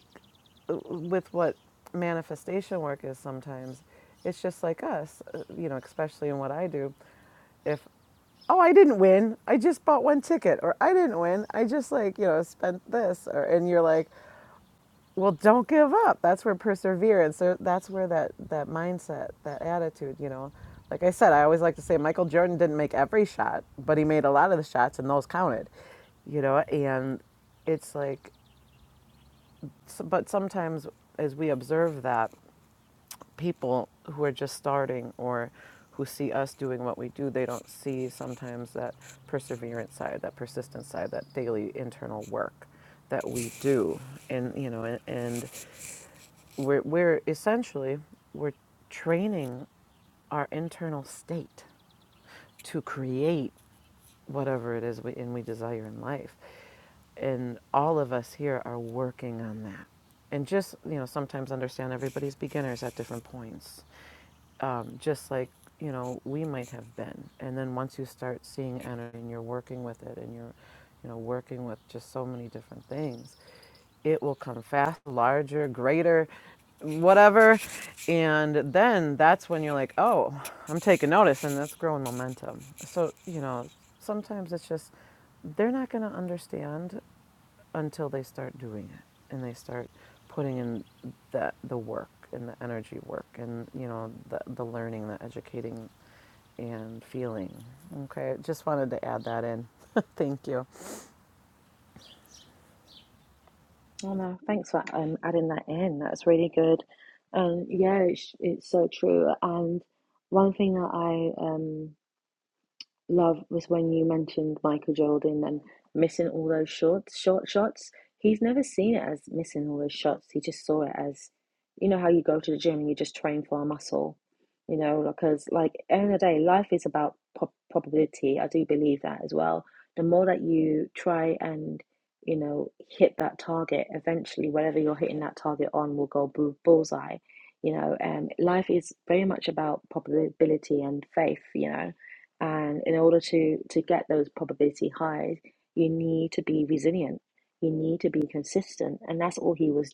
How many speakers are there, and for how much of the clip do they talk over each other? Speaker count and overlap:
2, no overlap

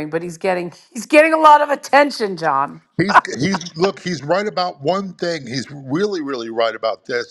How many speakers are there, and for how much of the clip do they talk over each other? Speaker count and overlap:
2, no overlap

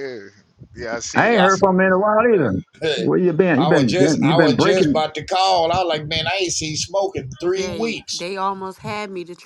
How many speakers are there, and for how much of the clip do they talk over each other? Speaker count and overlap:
4, about 34%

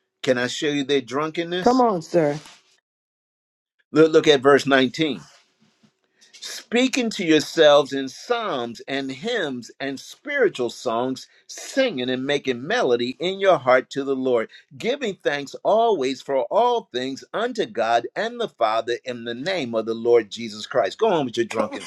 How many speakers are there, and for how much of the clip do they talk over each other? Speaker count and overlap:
2, about 2%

